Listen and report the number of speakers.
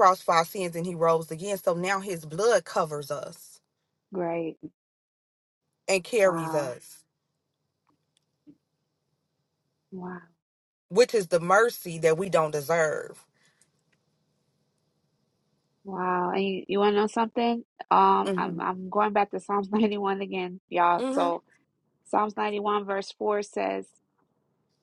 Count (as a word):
two